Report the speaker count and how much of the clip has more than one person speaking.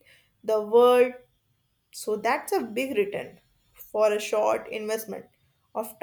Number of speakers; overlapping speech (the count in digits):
1, no overlap